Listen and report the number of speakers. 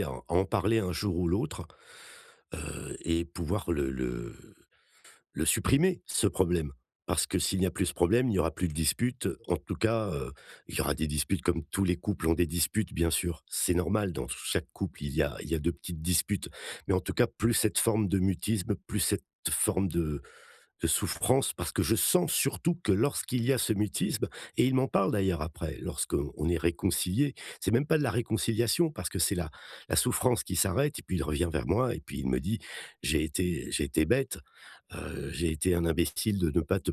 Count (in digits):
1